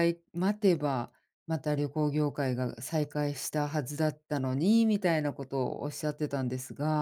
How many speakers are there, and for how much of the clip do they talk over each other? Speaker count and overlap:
one, no overlap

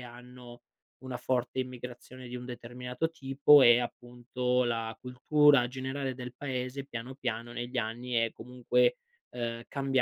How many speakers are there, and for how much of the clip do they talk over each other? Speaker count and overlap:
one, no overlap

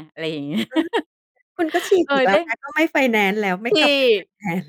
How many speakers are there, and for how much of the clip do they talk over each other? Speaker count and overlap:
two, about 10%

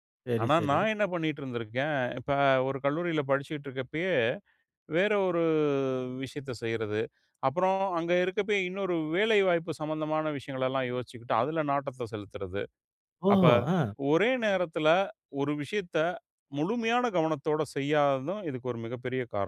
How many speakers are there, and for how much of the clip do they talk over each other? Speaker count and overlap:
two, about 3%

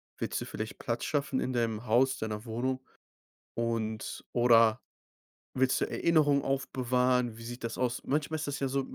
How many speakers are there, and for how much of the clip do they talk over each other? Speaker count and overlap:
one, no overlap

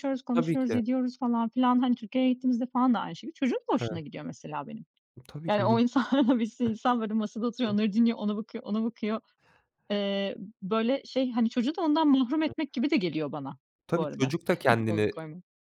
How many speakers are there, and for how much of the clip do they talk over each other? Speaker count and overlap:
two, about 9%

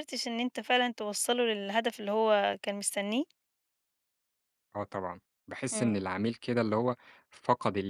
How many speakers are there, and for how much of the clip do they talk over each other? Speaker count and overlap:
two, about 3%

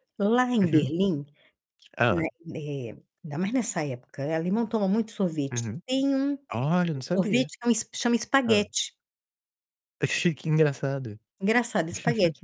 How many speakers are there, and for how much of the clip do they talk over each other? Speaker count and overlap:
two, about 11%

